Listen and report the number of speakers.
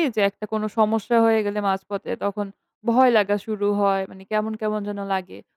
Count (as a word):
one